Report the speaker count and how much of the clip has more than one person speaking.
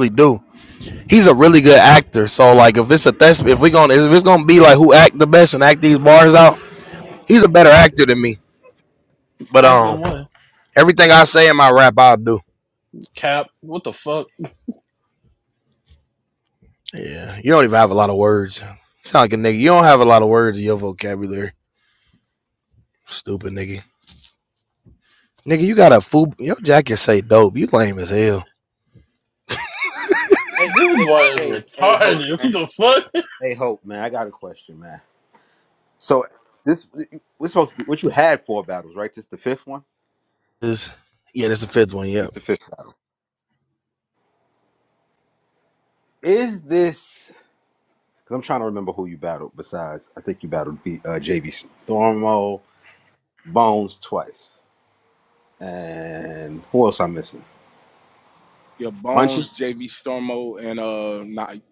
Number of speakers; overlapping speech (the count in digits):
4, about 4%